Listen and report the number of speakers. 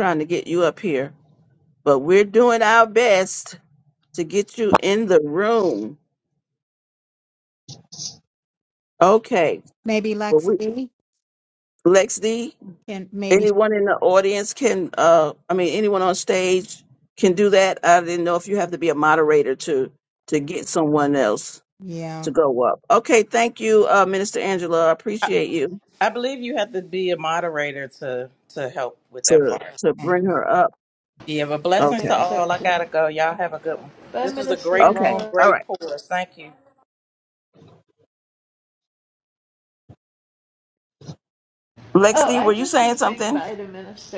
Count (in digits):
4